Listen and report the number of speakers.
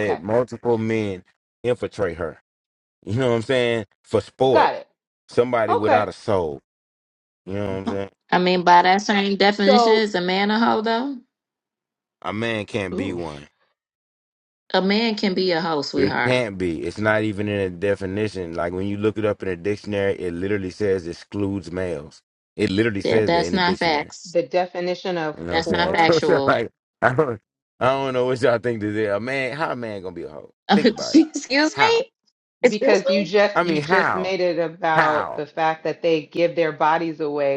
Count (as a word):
three